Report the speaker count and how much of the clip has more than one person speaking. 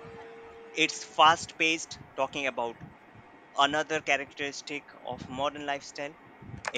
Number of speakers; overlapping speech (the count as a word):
one, no overlap